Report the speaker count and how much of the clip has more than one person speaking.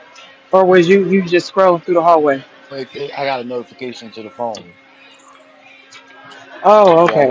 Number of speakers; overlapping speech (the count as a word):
two, about 4%